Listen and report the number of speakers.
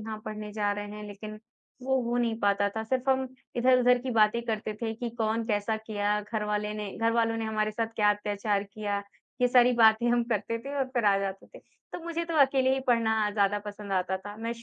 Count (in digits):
1